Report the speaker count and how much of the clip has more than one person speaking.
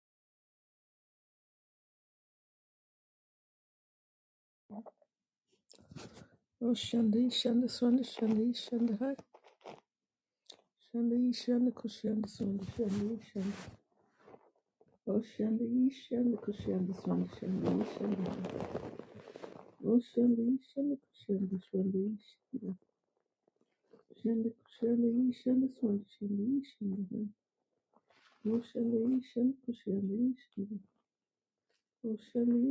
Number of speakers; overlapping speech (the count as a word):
one, no overlap